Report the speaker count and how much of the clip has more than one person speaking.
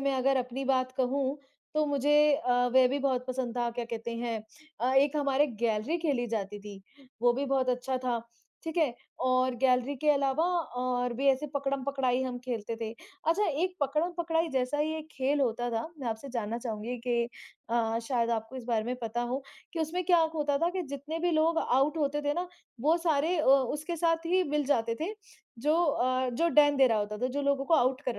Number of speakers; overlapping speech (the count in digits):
1, no overlap